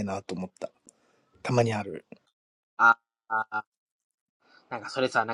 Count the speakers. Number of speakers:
2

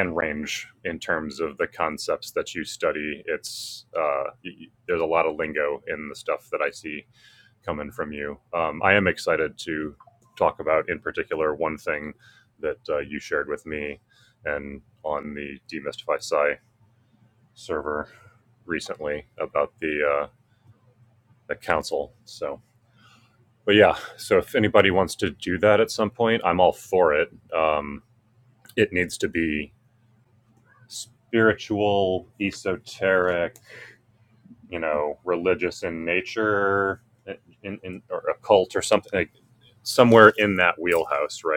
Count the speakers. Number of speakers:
1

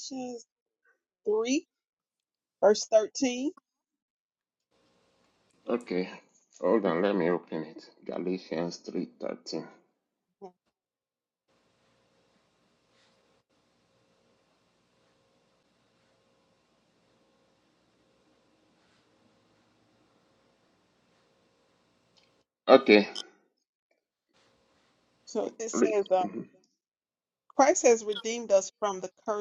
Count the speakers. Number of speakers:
2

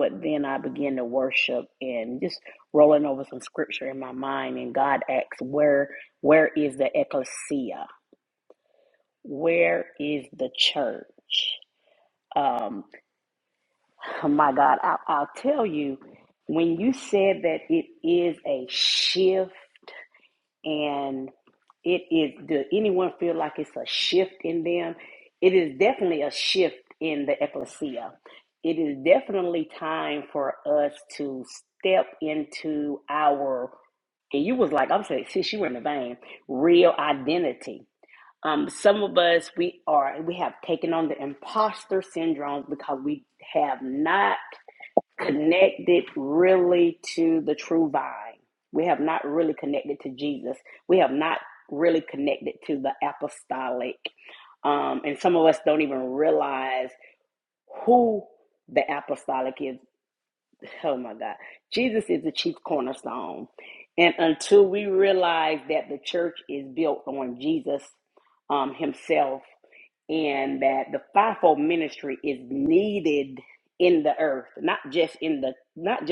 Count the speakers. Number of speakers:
1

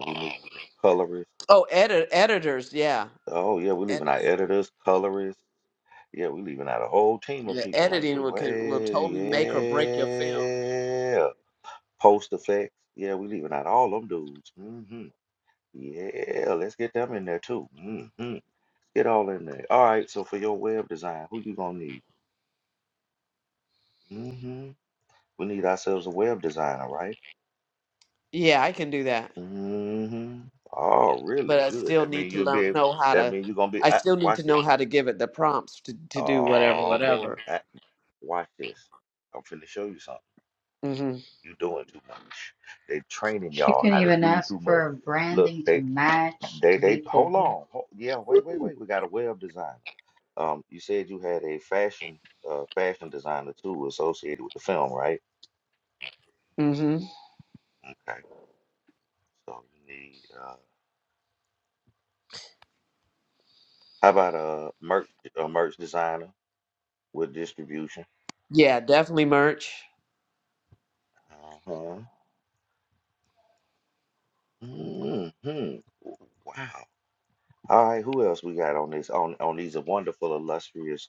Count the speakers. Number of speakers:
3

